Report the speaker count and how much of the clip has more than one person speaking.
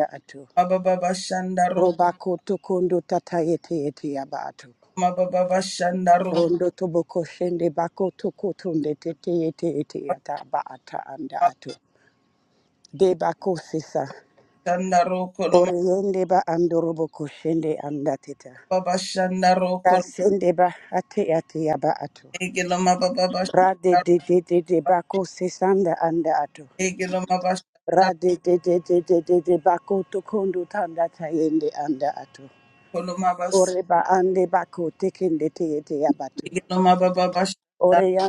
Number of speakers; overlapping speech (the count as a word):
two, about 2%